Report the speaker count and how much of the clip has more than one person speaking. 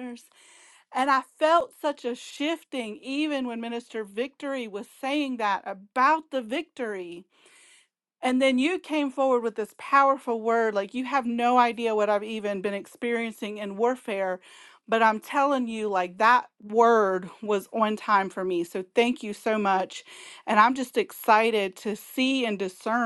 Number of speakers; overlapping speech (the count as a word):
one, no overlap